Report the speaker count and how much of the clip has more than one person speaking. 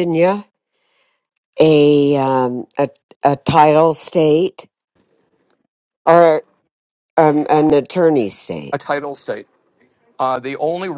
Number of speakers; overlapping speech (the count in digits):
2, no overlap